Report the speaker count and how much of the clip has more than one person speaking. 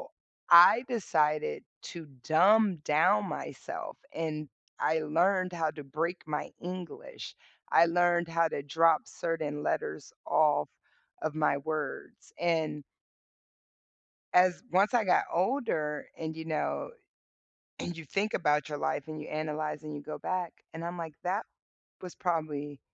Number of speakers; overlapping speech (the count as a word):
one, no overlap